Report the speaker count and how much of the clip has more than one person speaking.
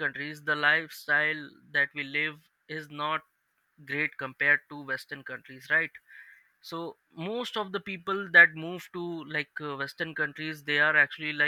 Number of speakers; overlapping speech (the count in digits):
1, no overlap